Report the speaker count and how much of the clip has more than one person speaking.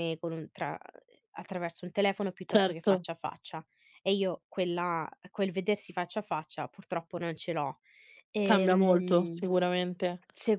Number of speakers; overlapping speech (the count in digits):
2, about 13%